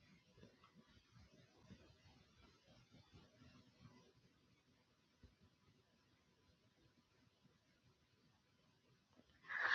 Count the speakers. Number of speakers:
0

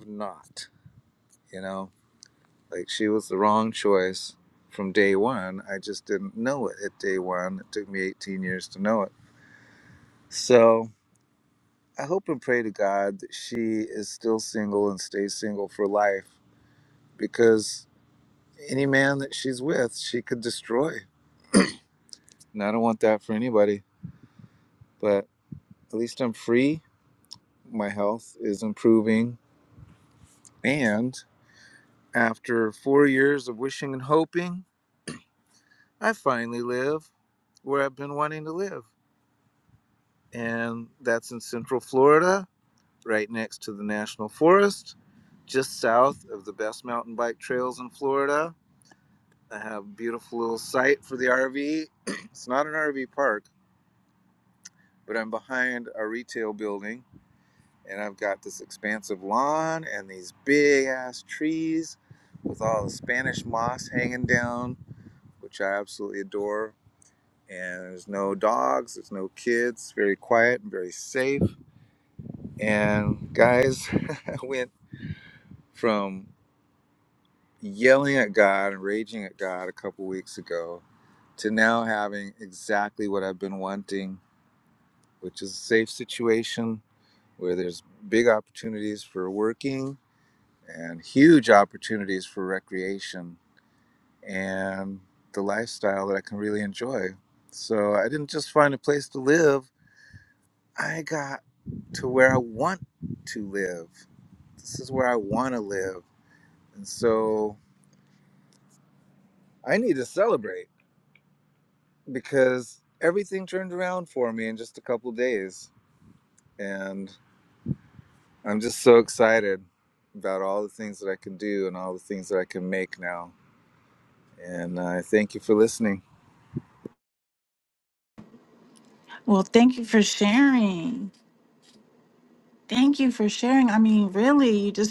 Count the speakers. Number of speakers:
2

